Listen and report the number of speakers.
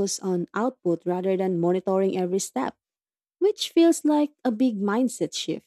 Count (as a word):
one